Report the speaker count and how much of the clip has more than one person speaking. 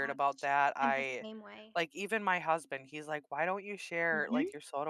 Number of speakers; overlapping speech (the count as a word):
two, about 19%